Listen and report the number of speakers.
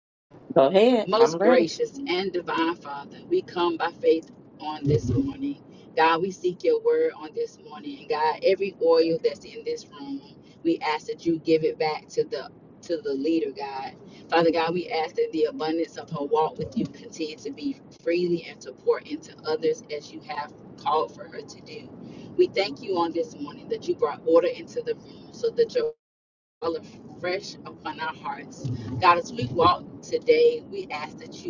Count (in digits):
2